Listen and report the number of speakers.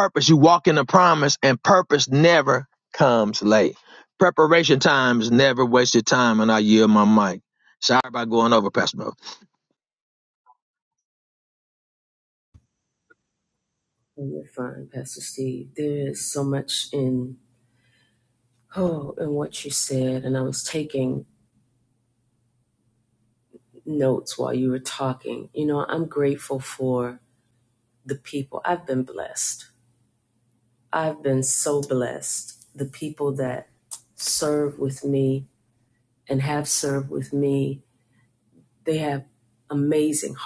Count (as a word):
two